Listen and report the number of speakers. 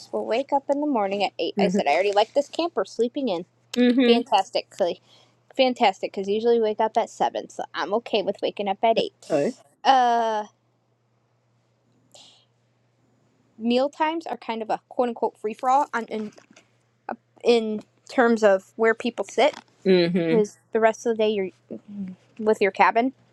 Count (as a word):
two